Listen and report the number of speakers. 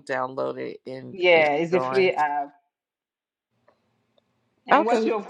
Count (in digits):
2